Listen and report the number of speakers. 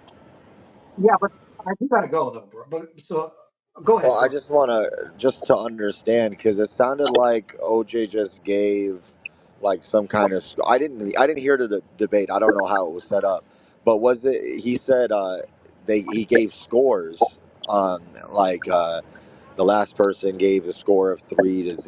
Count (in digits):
2